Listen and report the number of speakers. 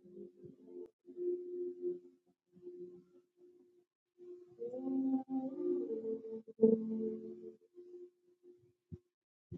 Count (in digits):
0